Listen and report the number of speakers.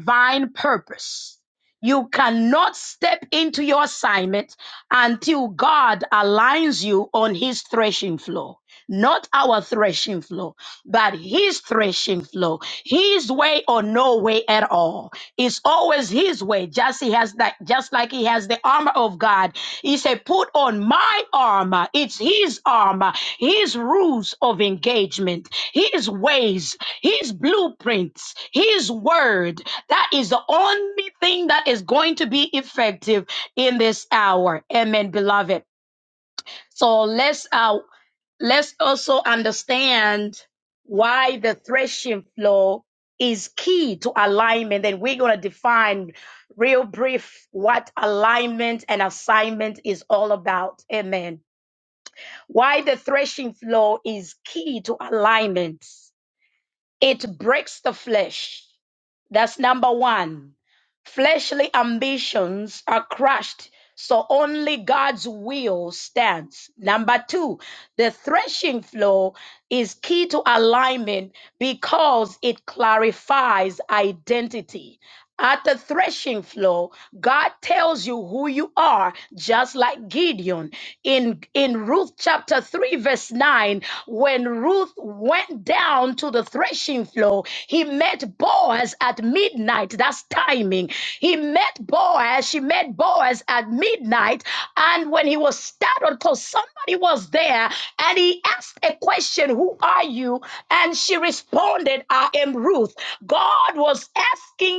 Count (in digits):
1